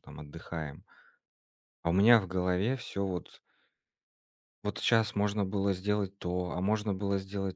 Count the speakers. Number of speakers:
1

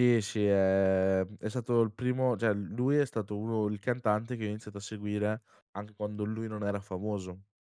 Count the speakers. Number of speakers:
1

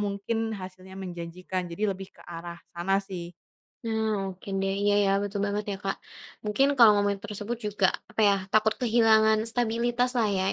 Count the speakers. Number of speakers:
2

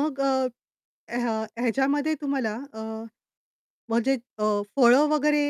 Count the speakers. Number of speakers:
1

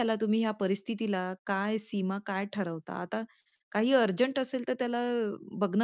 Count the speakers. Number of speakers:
1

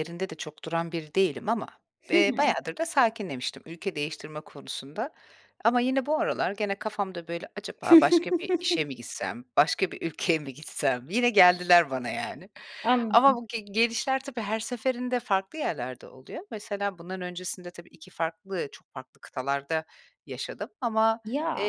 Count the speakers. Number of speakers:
2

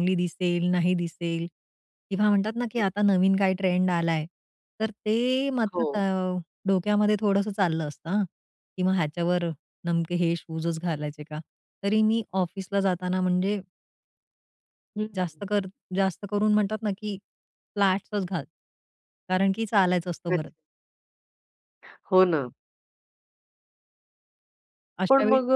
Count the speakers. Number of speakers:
2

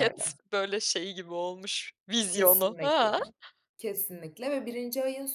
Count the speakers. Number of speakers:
2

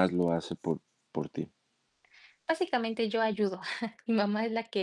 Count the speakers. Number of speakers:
2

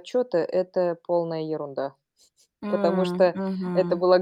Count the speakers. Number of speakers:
2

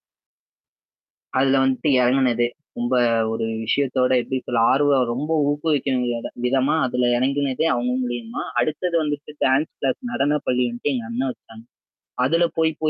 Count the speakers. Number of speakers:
1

